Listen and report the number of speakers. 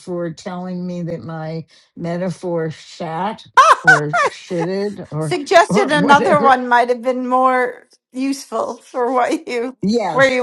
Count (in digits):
2